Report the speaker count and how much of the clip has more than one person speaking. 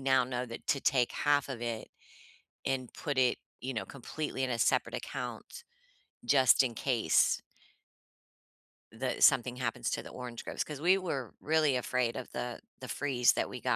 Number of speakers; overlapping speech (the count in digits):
1, no overlap